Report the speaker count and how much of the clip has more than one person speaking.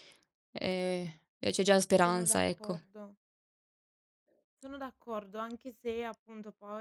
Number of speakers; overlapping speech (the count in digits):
2, about 11%